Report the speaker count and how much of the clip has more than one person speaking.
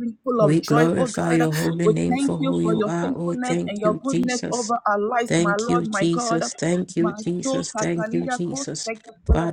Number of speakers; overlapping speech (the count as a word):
two, about 68%